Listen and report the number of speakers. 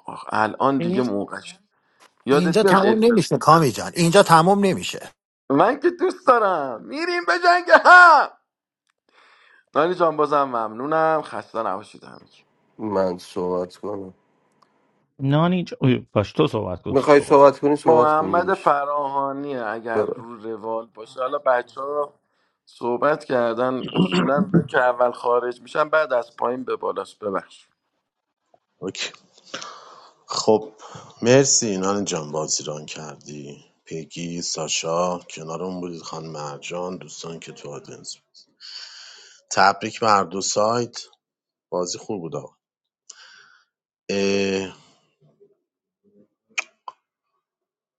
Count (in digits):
5